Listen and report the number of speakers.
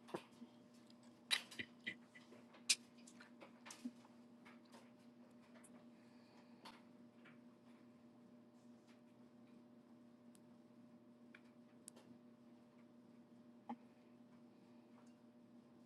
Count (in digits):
0